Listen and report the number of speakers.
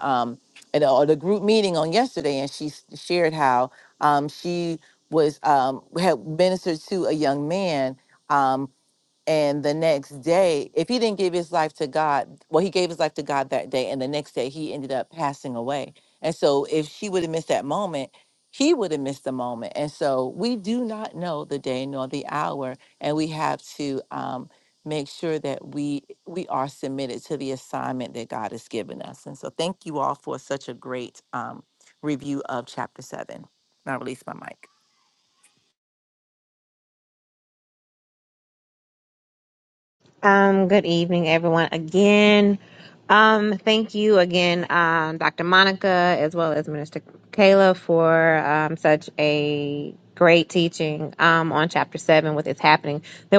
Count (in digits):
2